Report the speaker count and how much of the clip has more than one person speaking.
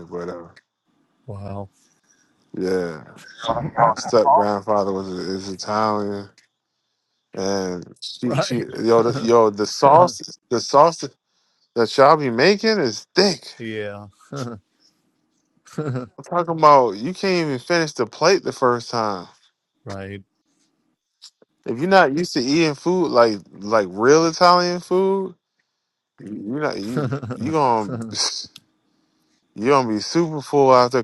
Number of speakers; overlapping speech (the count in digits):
2, about 1%